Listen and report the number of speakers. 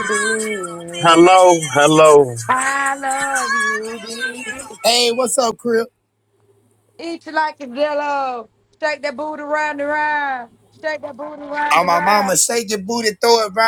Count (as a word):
three